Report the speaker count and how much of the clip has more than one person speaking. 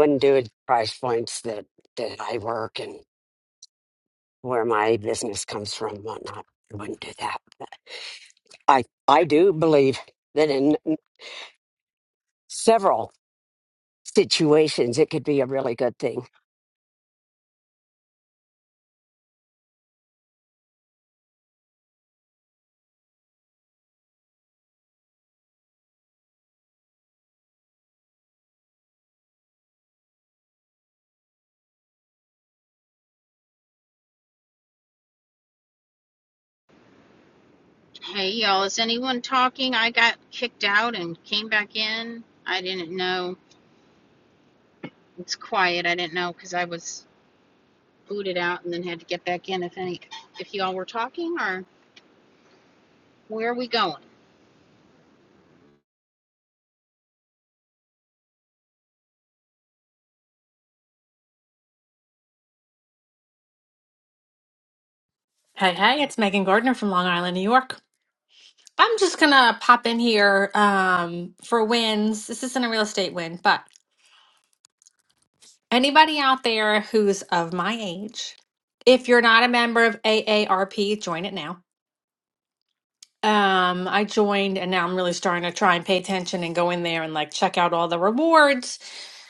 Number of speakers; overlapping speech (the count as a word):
three, no overlap